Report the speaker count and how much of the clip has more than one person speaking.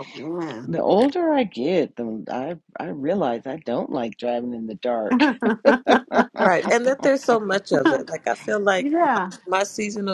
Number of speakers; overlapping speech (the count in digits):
3, about 6%